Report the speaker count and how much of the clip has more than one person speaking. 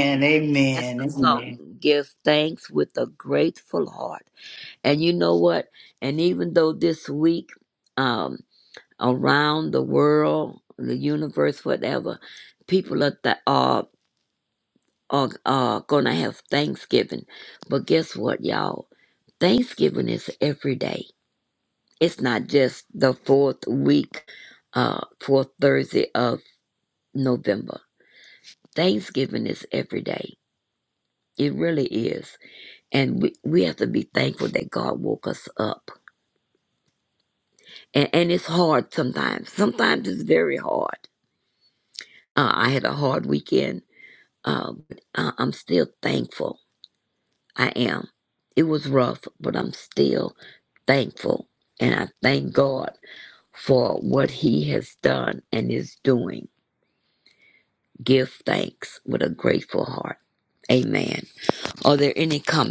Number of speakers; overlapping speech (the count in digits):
2, about 1%